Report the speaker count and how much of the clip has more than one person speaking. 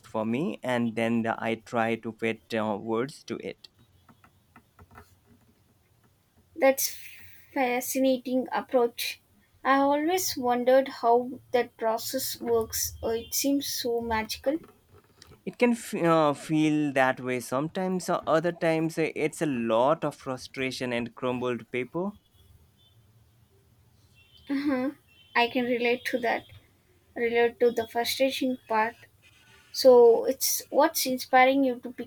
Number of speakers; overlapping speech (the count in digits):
2, no overlap